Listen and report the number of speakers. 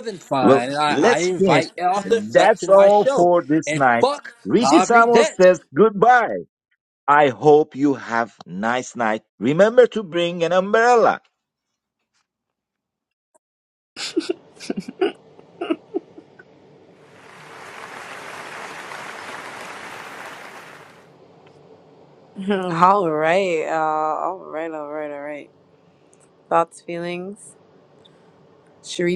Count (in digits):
3